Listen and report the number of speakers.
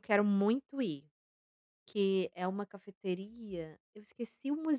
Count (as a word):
one